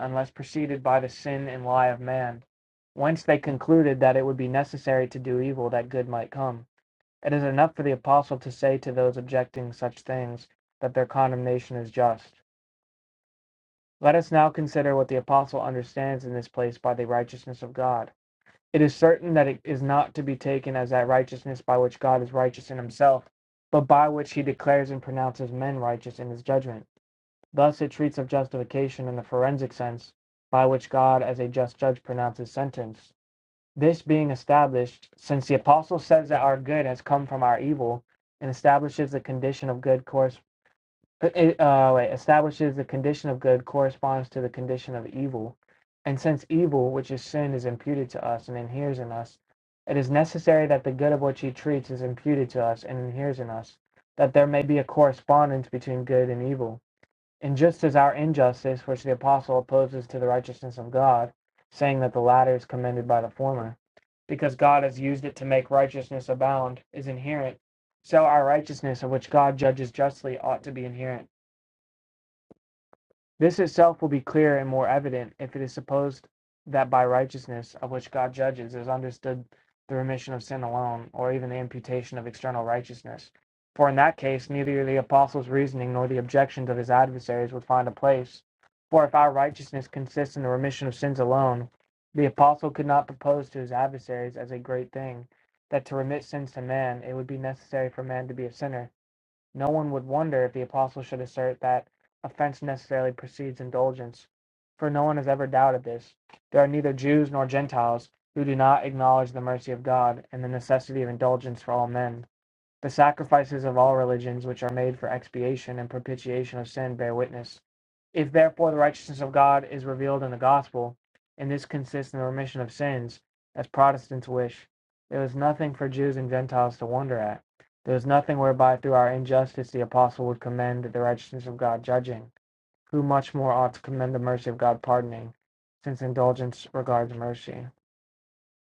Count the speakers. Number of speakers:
1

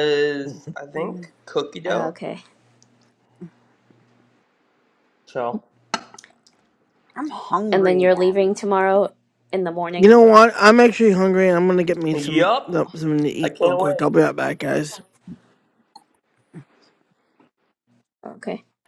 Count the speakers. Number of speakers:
4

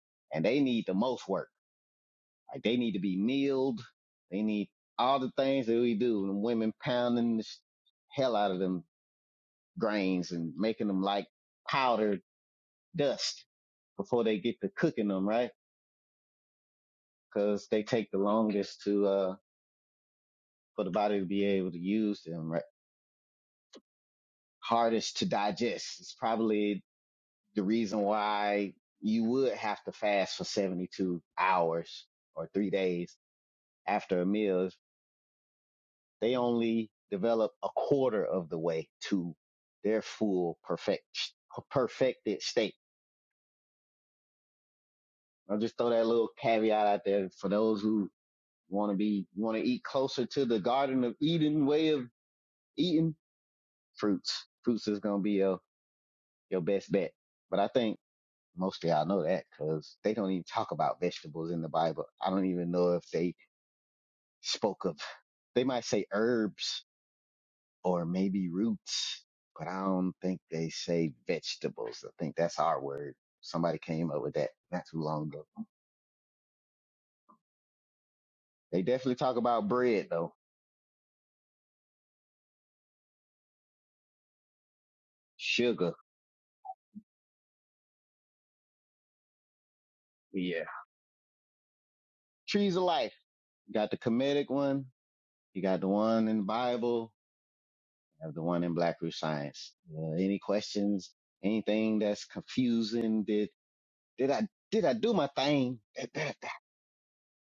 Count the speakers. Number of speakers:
1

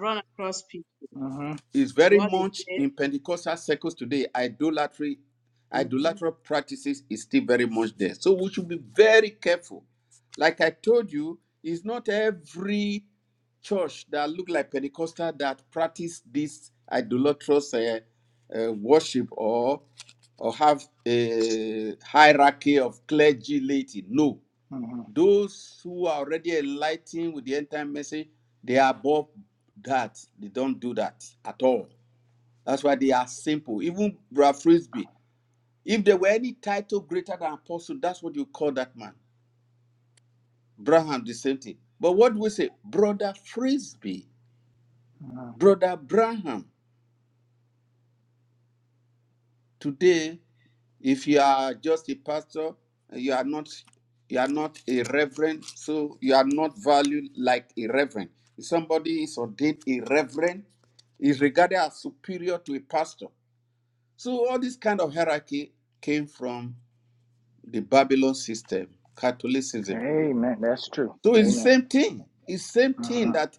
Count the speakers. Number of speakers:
3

